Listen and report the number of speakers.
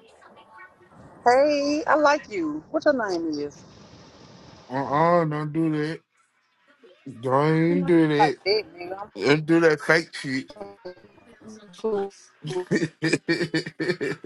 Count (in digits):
2